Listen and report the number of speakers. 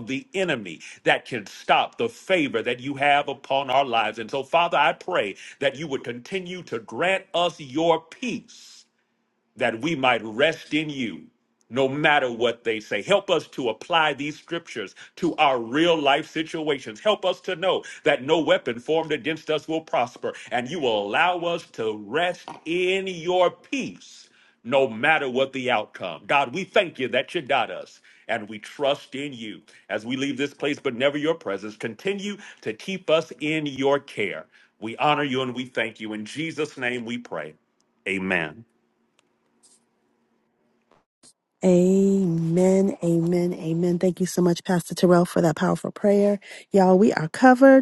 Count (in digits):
2